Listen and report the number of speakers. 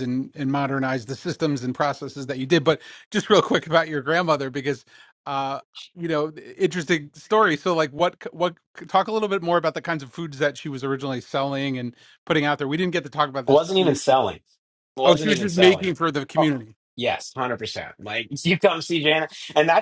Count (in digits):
2